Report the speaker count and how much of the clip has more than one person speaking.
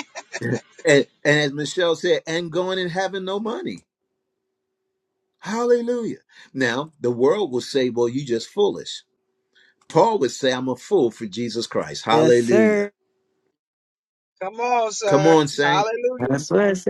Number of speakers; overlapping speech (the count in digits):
3, about 9%